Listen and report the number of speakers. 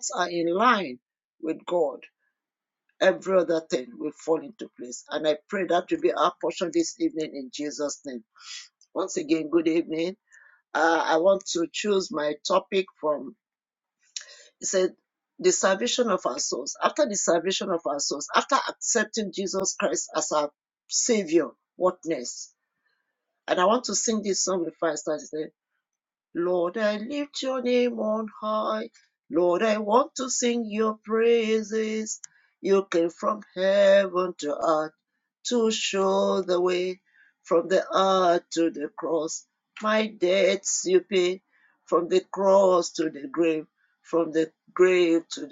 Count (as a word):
one